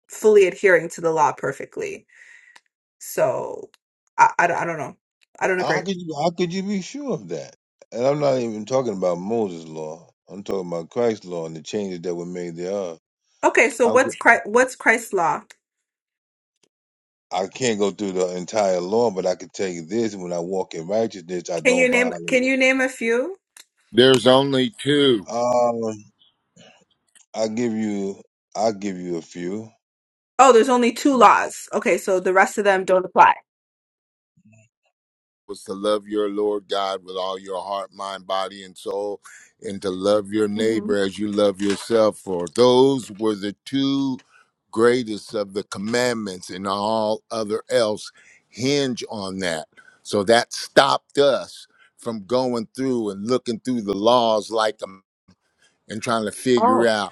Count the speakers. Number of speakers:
three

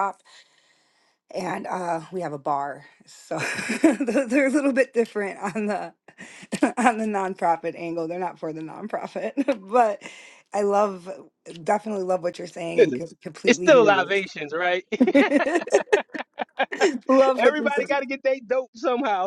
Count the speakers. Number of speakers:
two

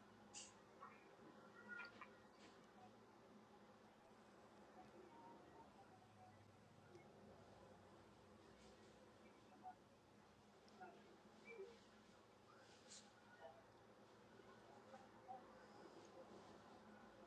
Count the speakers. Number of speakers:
zero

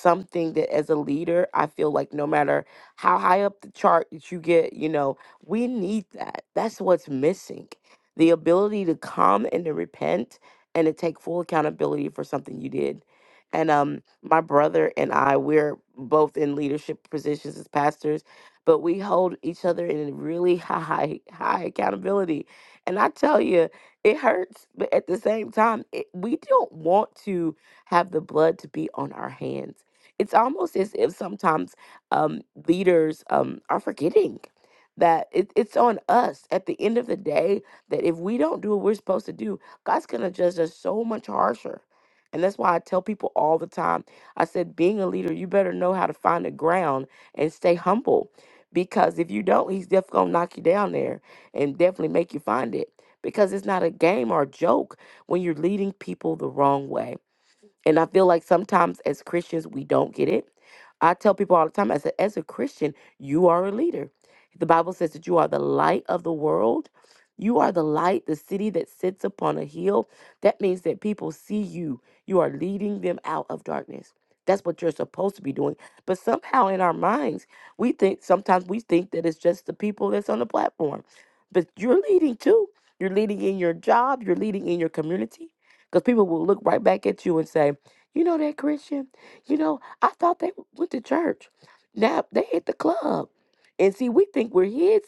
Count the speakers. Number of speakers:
one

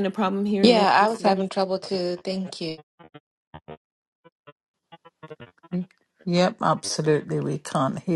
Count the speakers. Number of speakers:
three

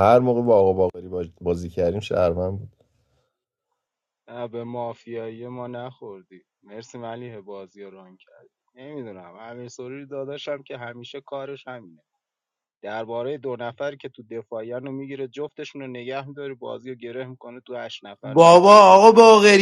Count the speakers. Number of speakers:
three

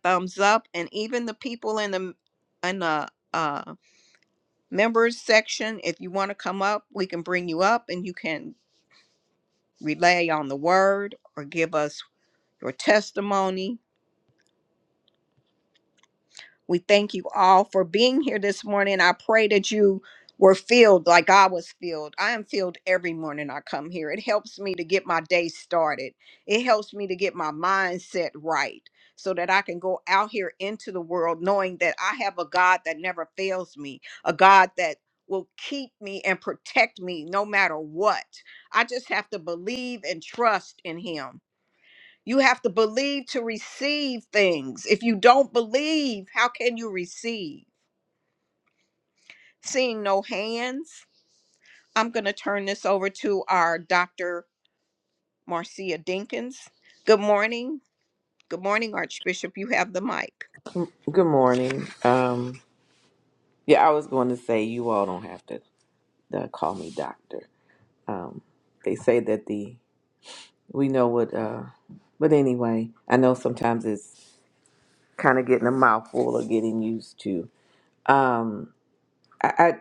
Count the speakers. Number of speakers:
two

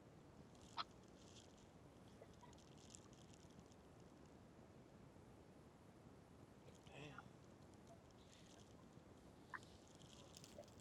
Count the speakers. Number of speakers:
zero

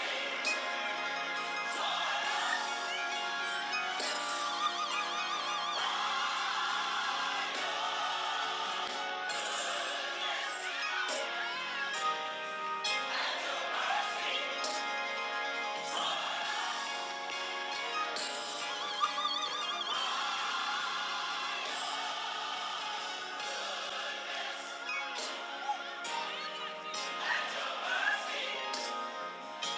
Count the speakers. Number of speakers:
zero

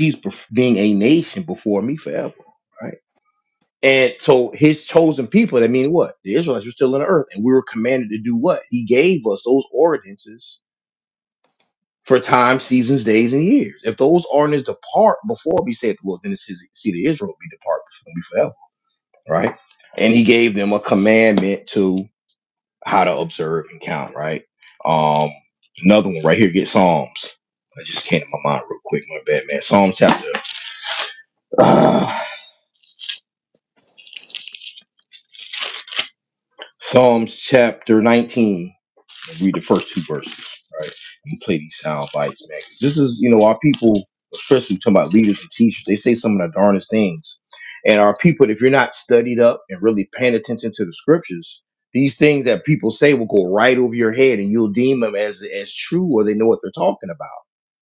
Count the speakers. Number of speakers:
one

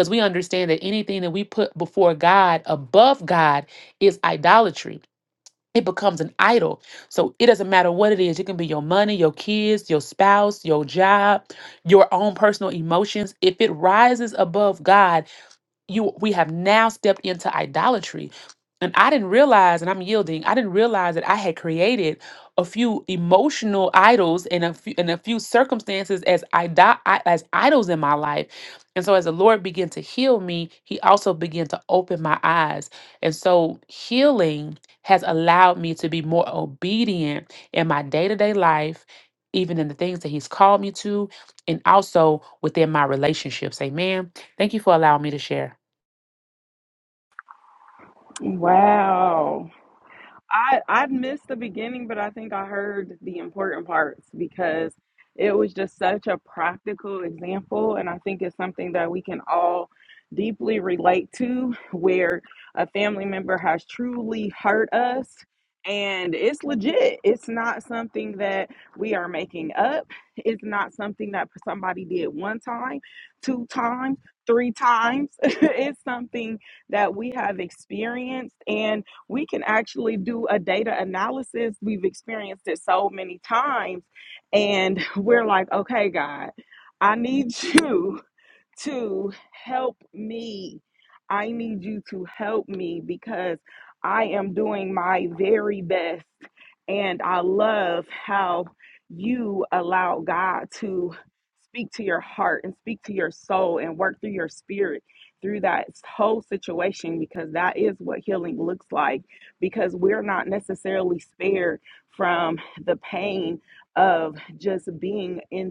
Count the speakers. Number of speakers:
two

